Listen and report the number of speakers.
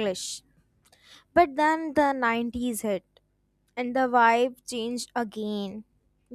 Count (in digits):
1